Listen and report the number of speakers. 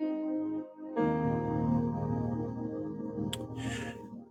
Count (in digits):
0